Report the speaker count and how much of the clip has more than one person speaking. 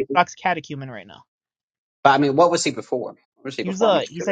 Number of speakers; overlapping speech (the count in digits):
2, about 20%